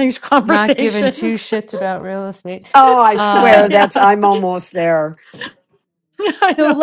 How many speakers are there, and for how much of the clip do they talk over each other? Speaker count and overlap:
three, about 25%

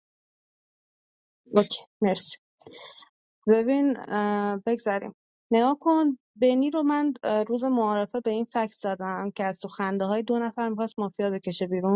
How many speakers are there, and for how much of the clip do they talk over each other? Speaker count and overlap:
one, no overlap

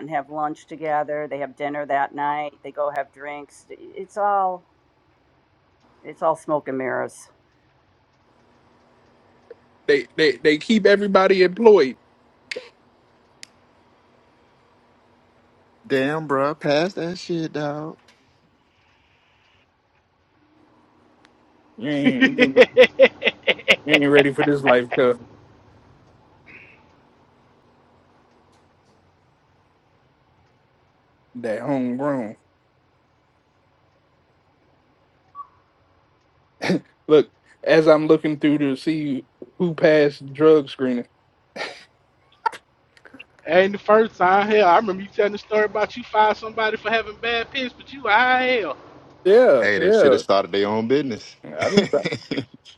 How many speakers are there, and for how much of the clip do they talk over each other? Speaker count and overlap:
four, about 1%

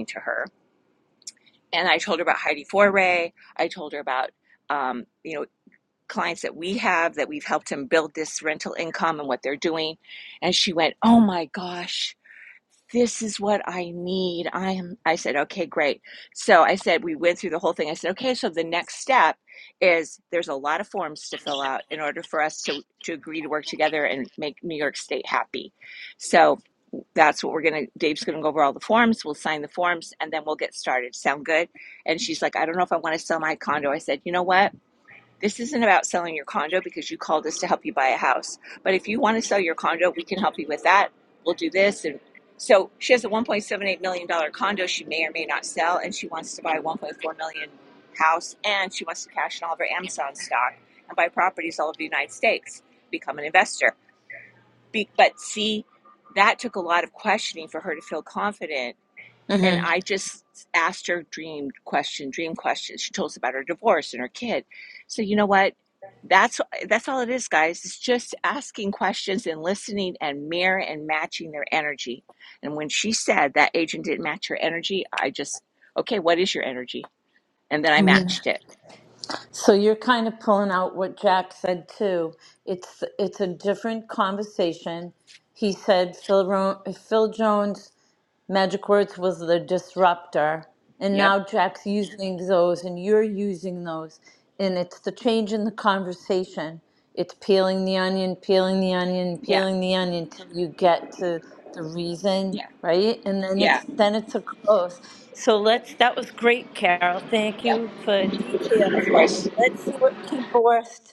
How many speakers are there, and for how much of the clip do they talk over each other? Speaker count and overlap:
two, about 1%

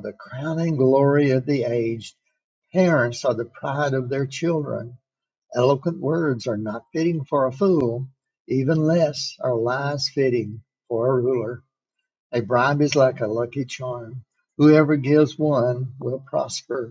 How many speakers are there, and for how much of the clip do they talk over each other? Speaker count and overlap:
one, no overlap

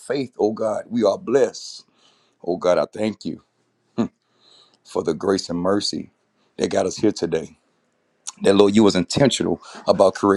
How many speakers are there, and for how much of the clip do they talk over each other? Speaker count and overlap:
one, no overlap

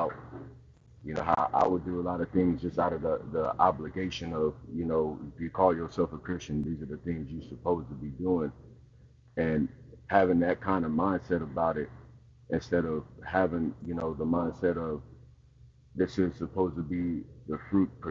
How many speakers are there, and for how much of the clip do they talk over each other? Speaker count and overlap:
one, no overlap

